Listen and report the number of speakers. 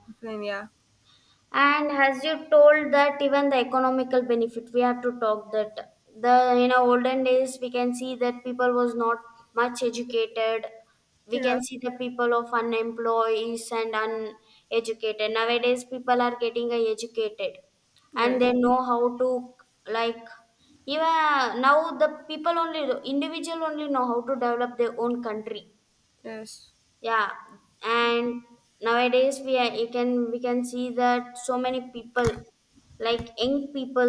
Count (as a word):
two